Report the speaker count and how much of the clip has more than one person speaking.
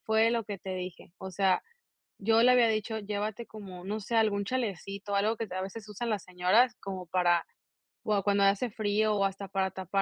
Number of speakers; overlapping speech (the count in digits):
1, no overlap